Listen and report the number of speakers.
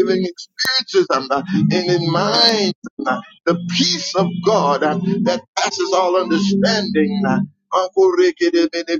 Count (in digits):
1